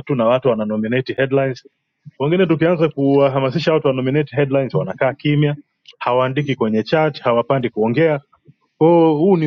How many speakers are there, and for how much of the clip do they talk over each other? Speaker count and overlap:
one, no overlap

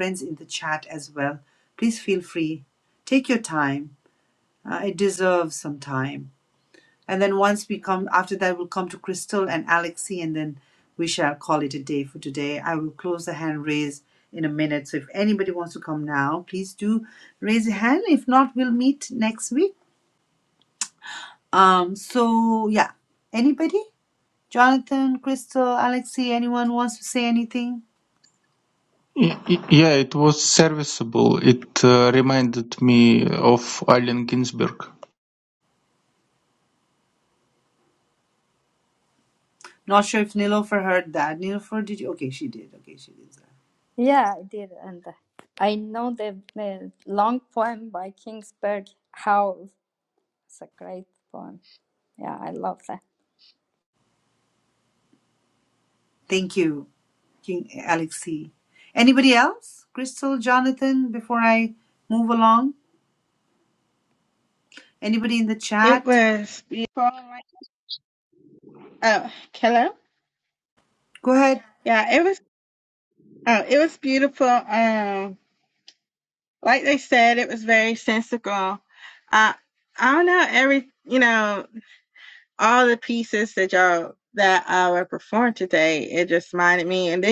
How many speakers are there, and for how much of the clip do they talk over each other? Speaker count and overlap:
four, under 1%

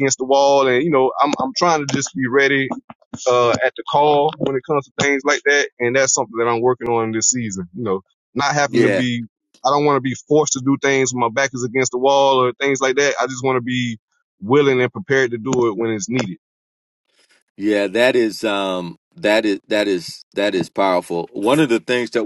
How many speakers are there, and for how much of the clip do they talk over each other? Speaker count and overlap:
two, about 1%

